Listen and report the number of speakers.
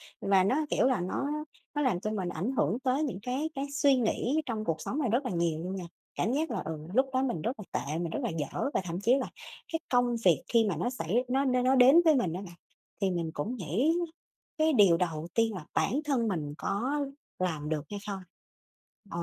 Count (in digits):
1